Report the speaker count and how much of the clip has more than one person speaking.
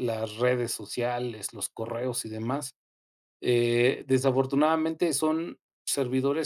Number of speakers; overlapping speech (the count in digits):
1, no overlap